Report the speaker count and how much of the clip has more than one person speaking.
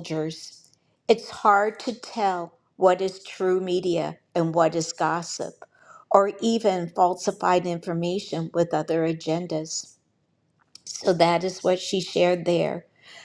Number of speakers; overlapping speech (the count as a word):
one, no overlap